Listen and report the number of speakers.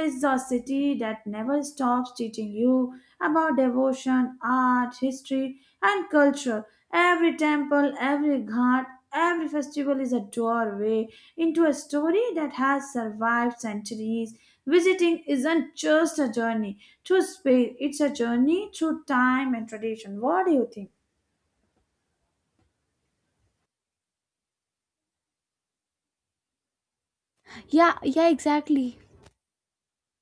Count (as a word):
two